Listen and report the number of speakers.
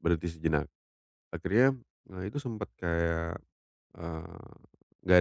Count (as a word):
one